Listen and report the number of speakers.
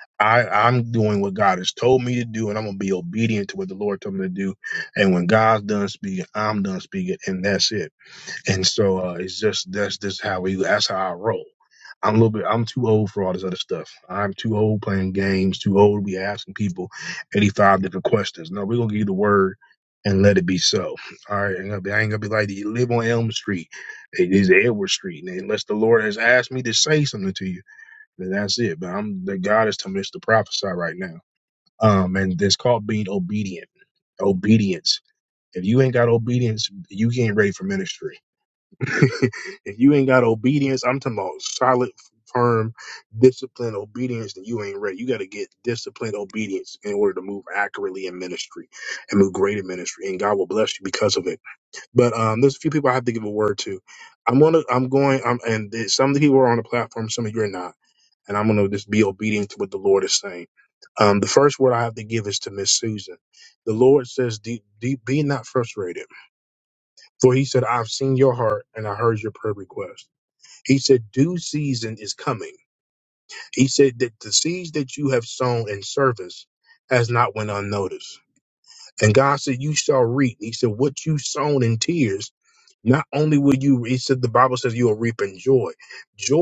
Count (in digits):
1